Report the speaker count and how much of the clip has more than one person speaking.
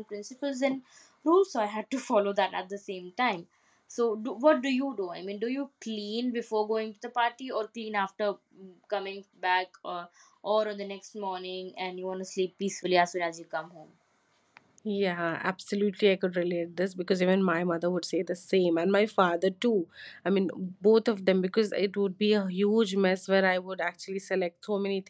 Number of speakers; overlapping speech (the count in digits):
2, no overlap